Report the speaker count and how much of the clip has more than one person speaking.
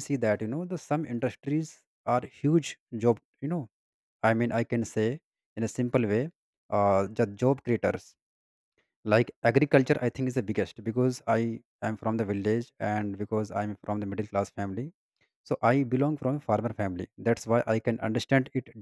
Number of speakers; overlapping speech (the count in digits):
1, no overlap